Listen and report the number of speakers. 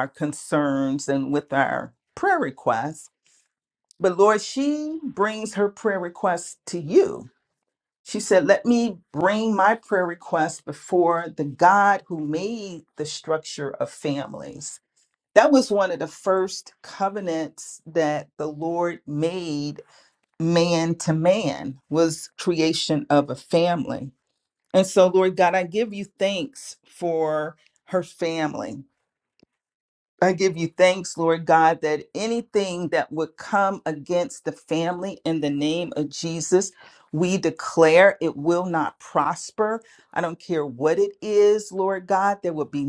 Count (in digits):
1